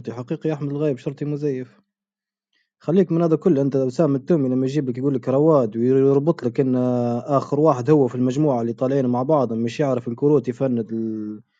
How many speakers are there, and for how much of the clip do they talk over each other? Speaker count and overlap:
one, no overlap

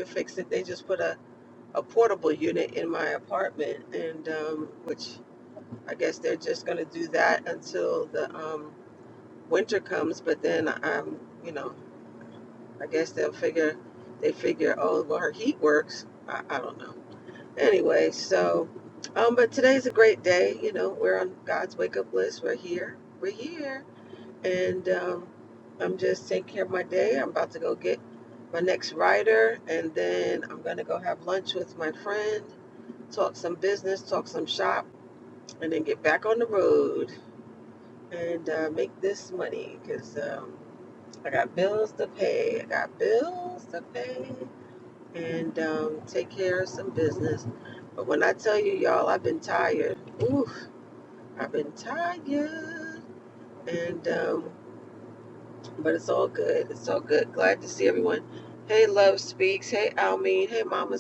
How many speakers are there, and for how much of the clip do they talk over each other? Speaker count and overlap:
one, no overlap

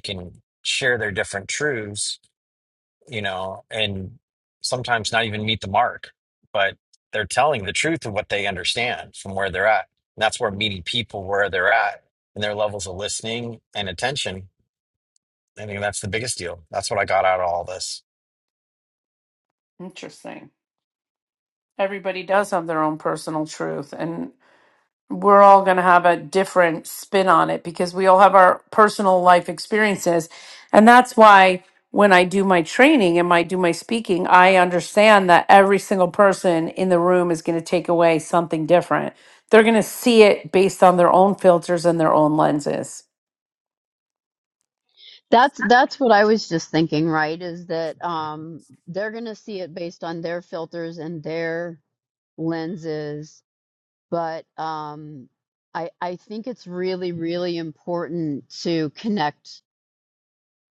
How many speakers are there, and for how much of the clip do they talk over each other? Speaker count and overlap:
three, no overlap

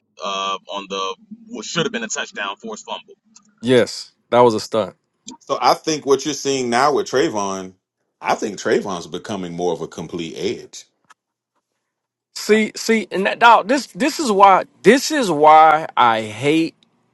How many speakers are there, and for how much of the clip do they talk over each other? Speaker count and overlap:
three, no overlap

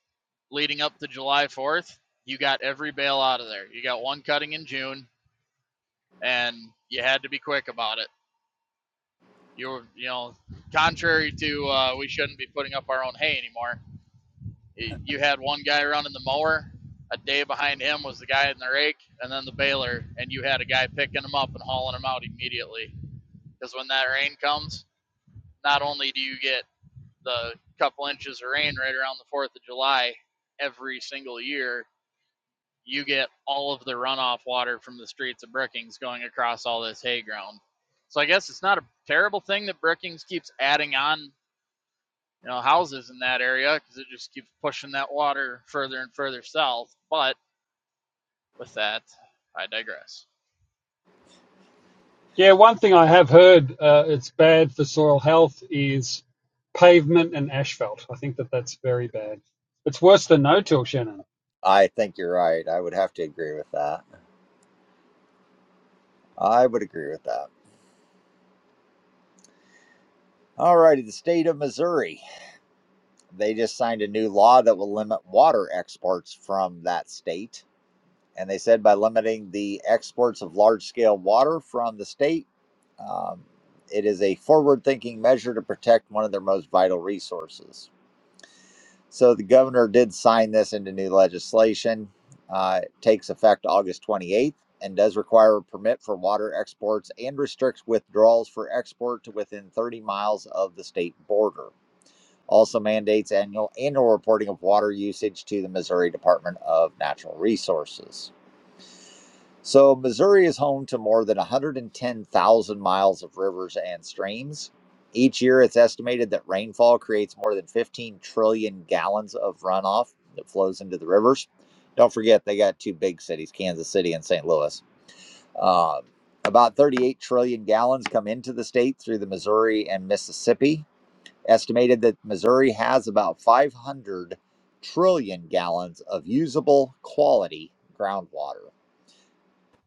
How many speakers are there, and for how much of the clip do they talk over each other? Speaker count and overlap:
three, no overlap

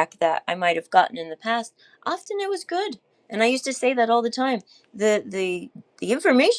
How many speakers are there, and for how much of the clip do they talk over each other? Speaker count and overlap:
one, no overlap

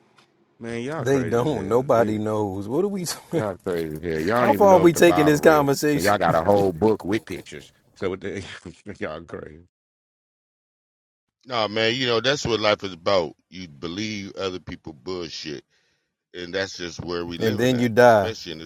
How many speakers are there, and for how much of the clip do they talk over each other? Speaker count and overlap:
three, about 17%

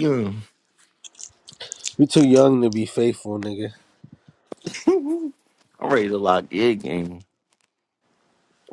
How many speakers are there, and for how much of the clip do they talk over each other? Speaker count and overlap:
two, no overlap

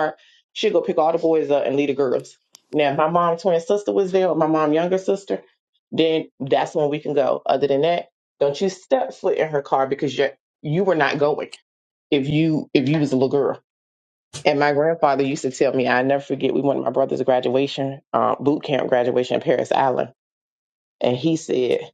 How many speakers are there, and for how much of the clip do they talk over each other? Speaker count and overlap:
one, no overlap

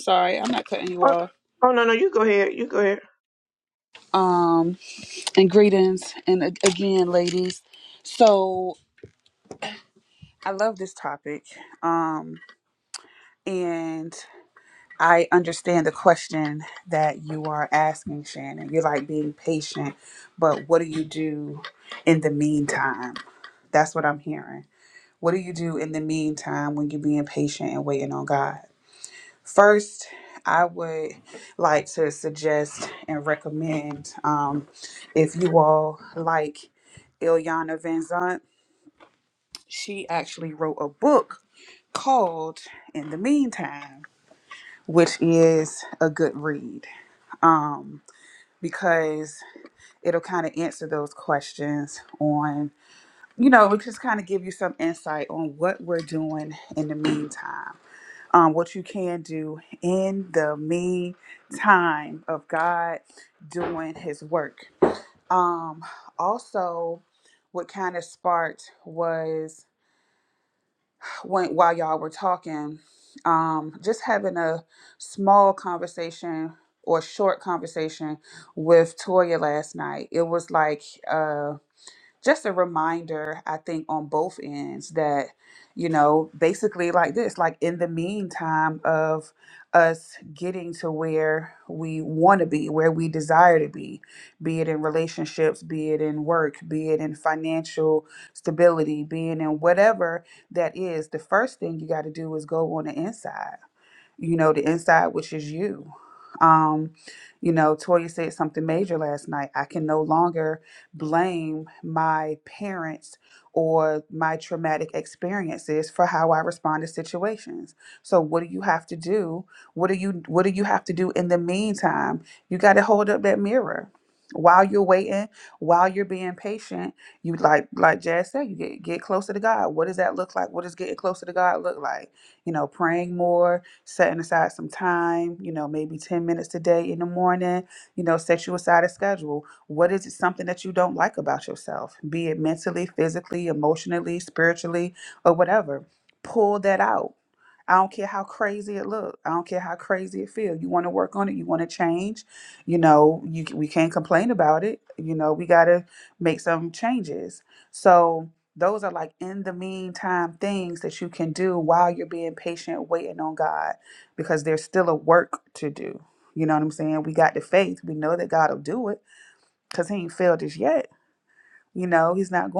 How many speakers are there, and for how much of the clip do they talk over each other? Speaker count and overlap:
two, under 1%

